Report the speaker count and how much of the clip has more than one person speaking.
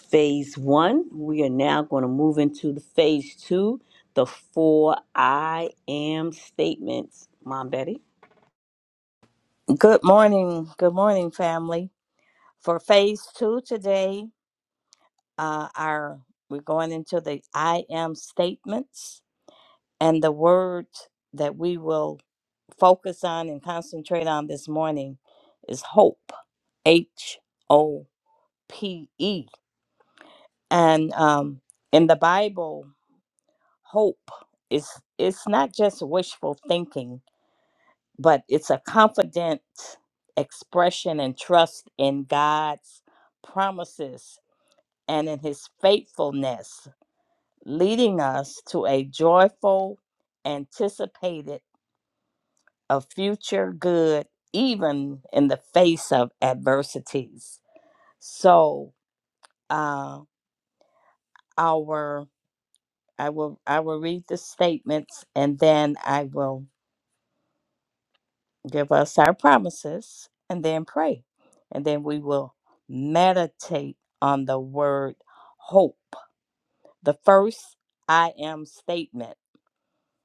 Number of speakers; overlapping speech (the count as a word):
two, no overlap